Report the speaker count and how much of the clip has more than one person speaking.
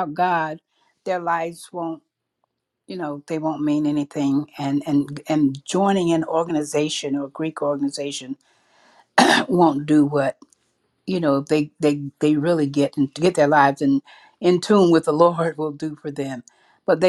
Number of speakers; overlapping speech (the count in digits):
1, no overlap